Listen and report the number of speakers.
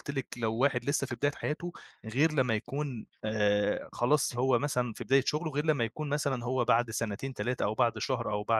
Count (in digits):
1